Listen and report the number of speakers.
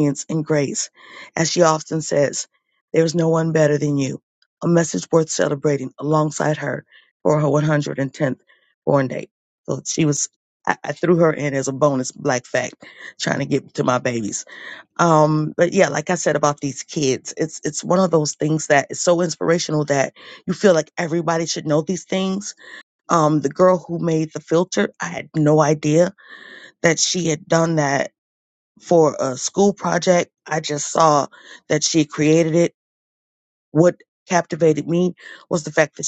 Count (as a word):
one